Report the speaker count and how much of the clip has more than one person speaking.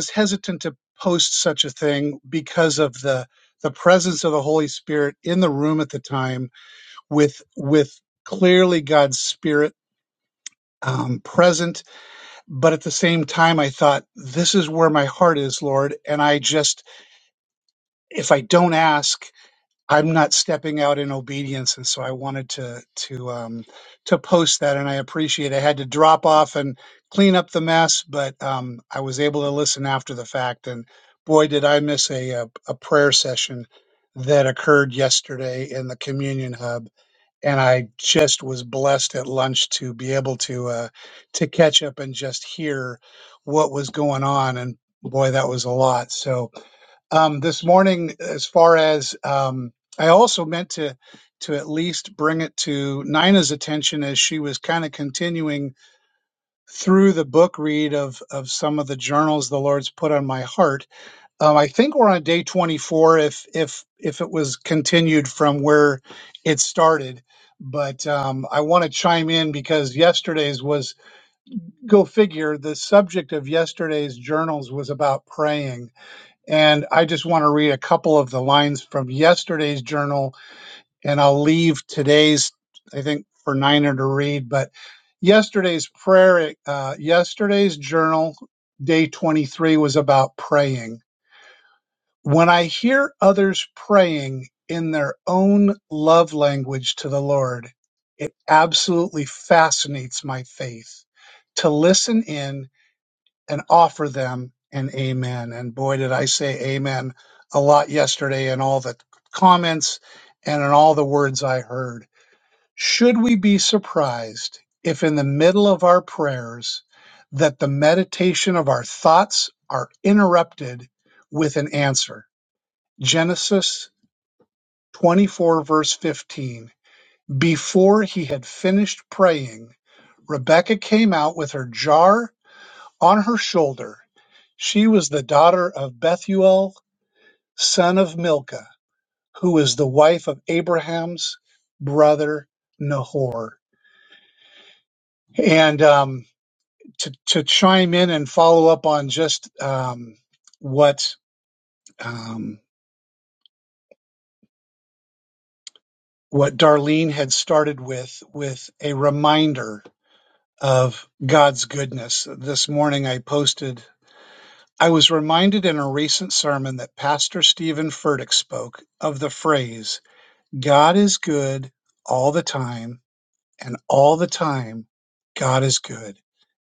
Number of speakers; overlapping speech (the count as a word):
one, no overlap